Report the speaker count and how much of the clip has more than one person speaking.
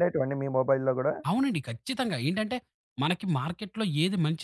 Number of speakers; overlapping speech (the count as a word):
two, no overlap